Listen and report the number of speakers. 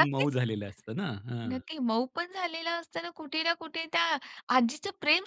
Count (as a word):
two